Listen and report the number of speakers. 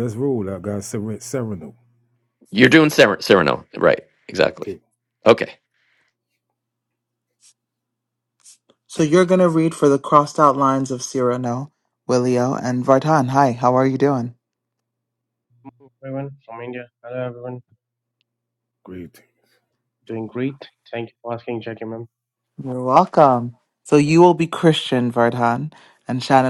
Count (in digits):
4